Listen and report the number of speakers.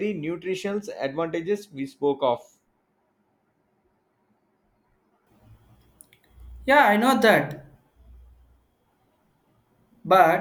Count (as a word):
two